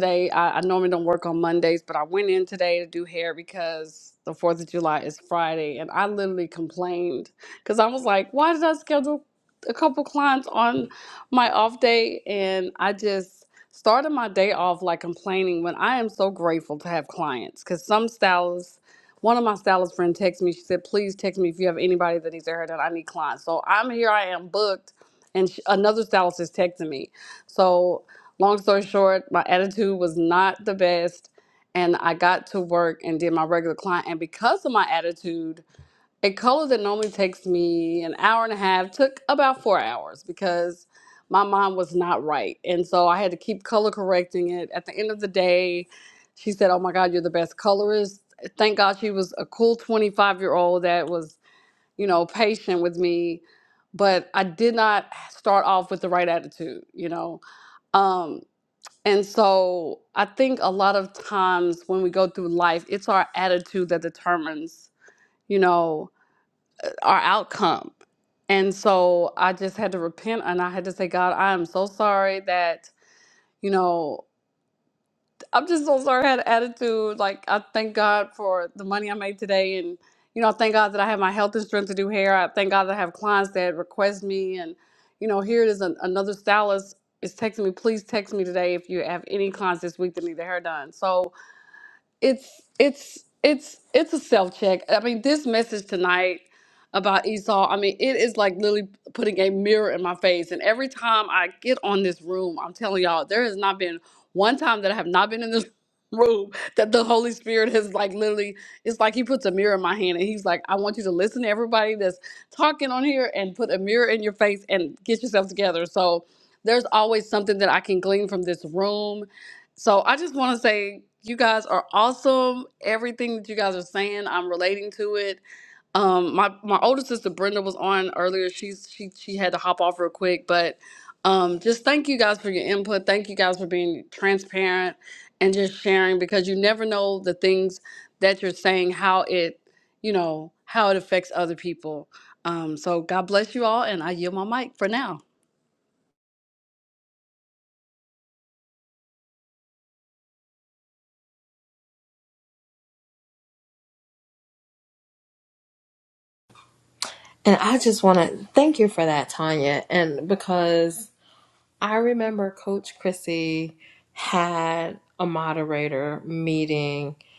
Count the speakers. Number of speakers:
2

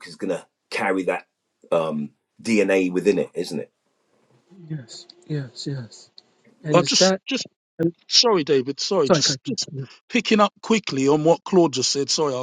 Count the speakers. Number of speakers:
3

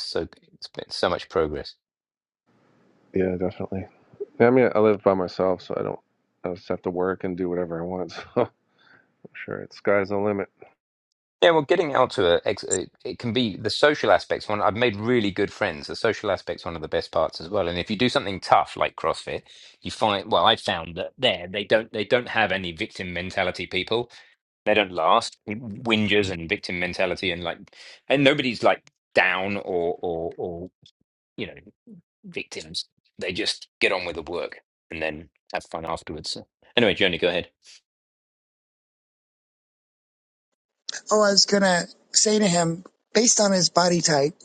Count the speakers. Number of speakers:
3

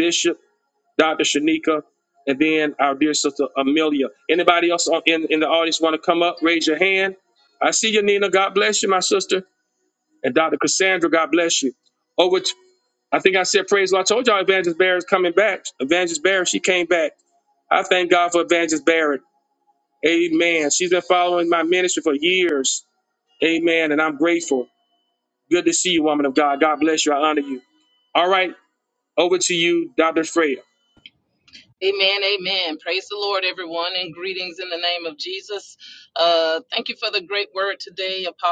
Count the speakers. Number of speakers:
2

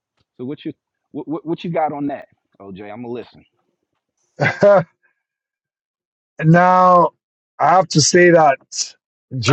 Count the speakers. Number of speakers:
2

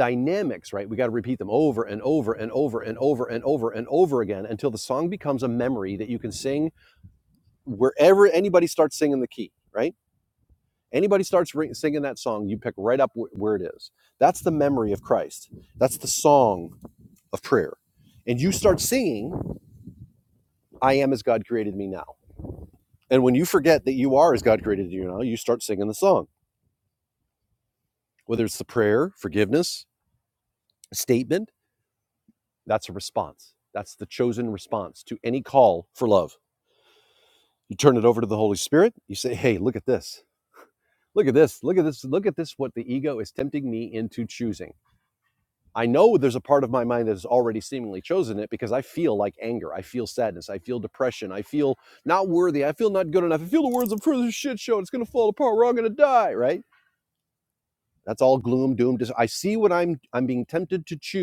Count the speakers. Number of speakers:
1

